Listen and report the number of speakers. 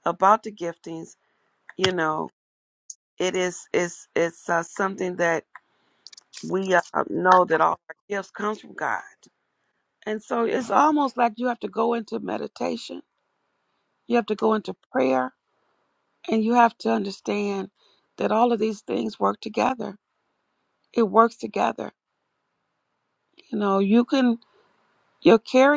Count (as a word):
one